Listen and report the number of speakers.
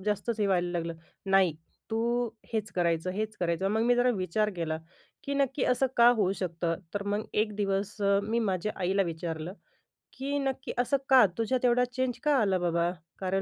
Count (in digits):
1